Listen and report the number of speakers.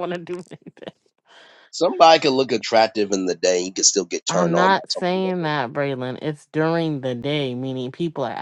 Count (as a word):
two